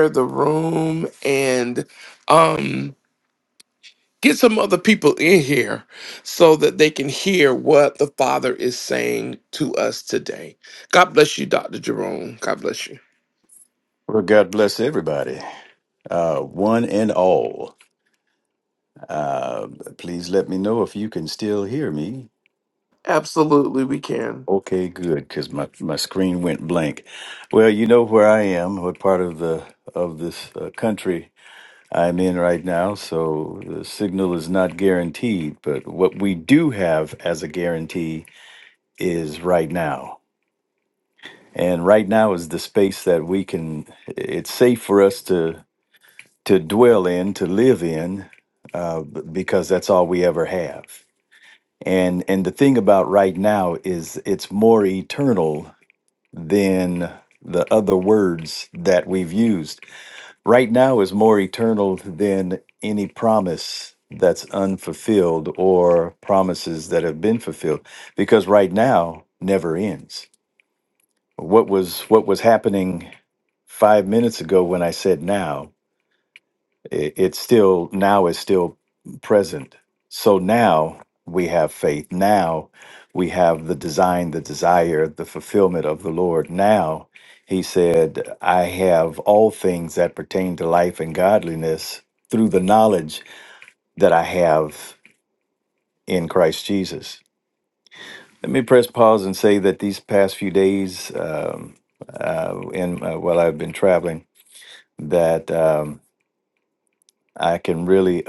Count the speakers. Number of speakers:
2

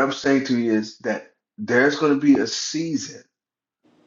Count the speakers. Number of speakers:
1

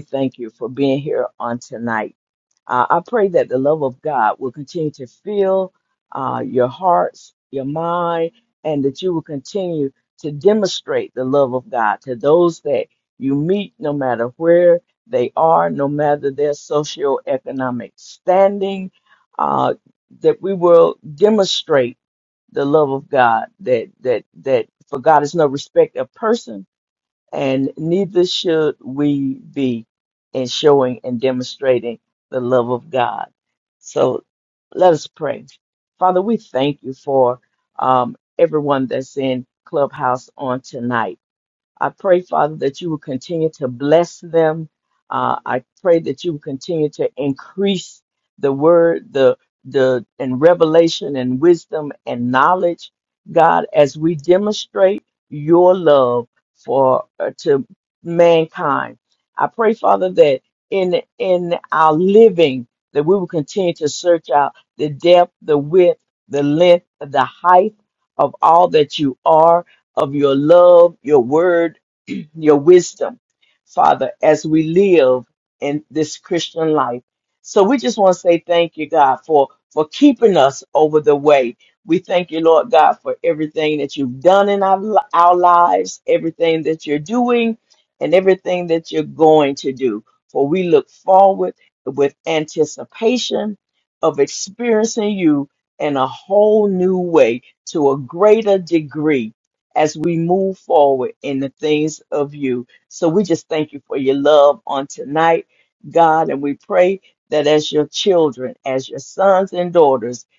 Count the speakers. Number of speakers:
1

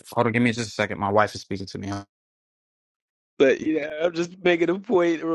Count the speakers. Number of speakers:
2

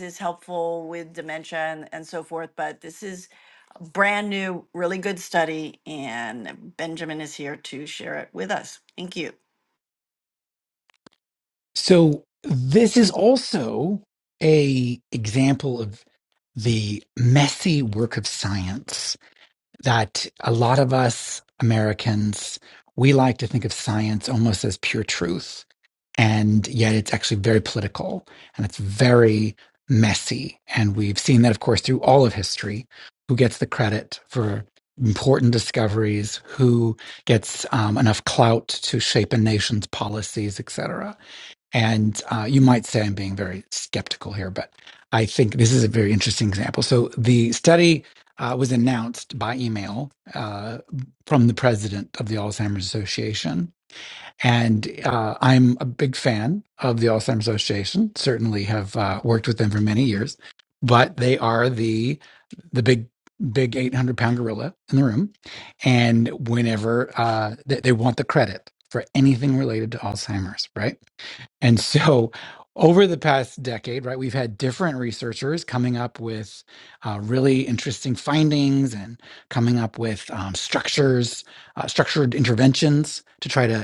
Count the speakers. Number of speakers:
2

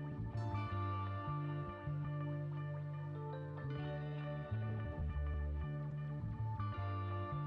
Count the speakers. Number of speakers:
0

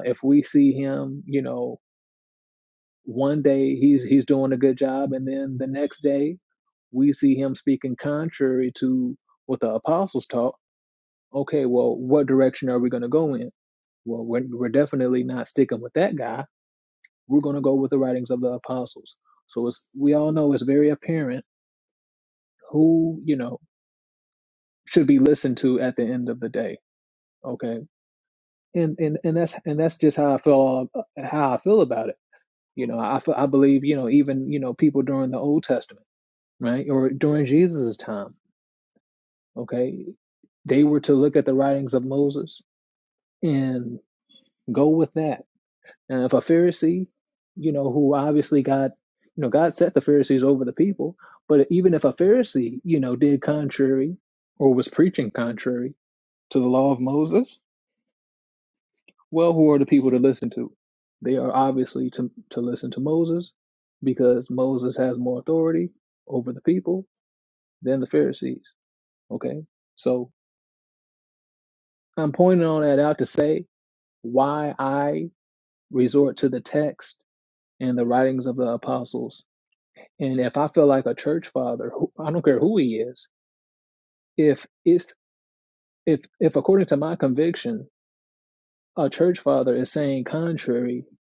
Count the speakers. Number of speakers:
1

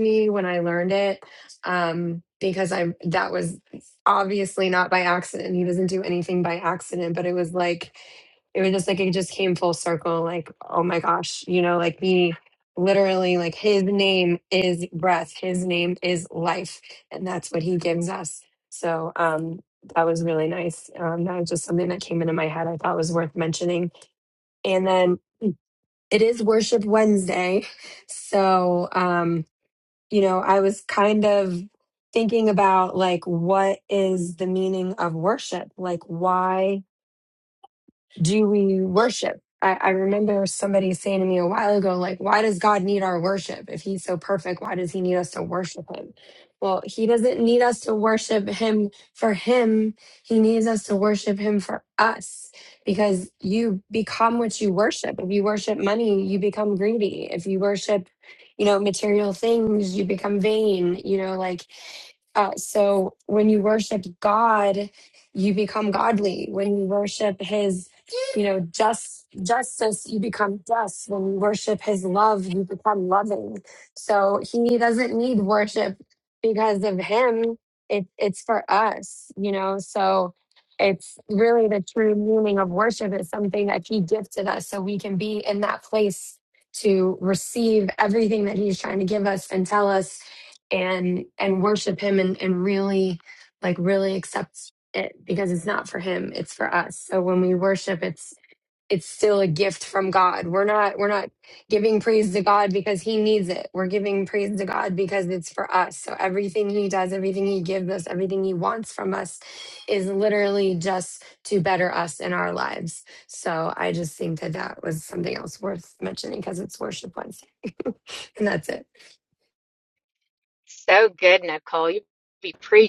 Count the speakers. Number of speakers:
2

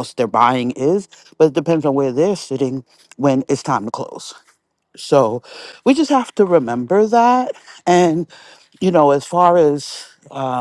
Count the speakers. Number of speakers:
1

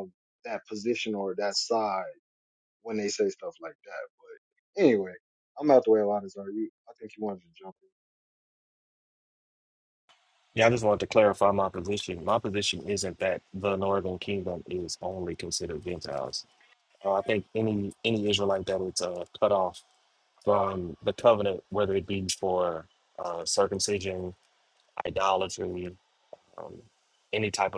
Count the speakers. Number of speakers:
2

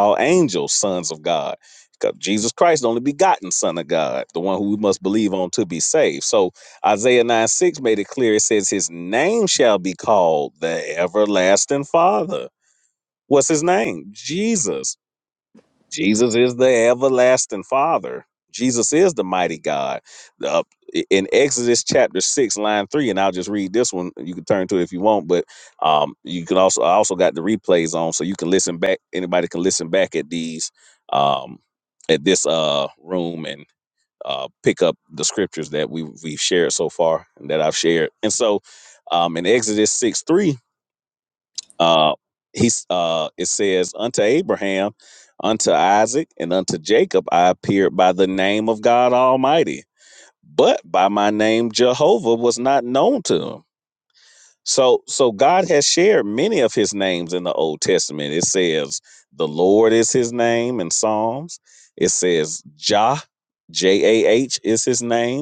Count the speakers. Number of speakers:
1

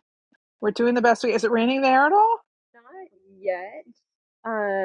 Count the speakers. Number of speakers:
2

